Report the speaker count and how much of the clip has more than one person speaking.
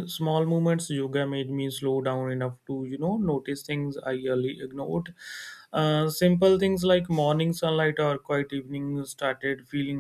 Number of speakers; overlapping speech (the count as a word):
one, no overlap